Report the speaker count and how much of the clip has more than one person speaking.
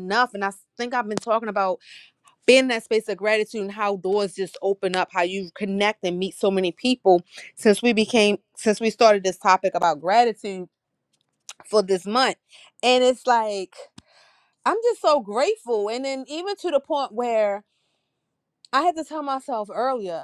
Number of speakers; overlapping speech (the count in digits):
1, no overlap